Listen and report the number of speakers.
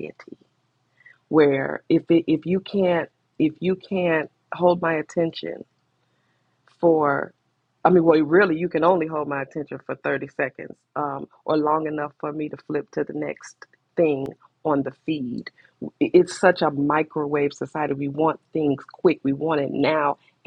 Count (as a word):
one